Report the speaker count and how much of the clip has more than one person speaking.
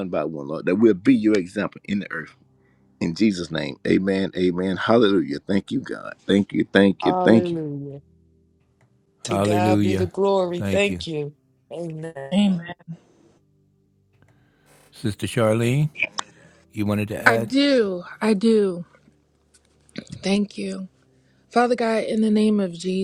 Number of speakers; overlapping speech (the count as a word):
four, about 9%